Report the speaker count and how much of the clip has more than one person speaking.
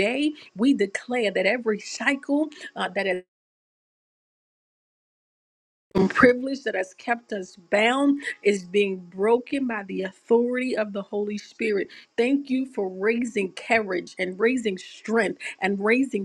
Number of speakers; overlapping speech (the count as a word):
one, no overlap